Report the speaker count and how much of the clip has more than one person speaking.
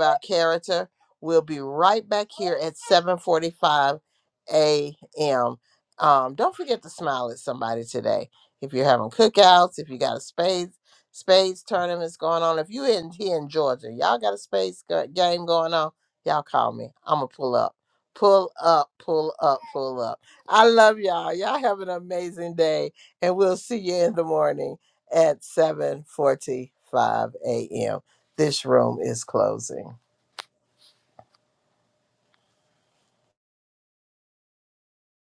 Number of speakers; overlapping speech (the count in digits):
1, no overlap